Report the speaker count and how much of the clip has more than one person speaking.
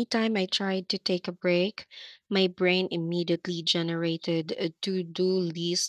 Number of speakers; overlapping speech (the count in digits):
1, no overlap